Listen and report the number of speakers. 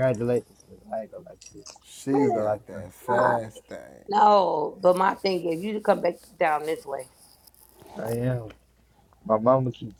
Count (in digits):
3